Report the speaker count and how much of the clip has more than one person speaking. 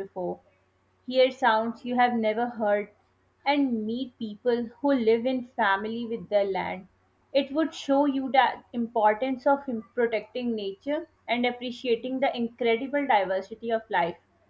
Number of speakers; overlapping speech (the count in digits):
1, no overlap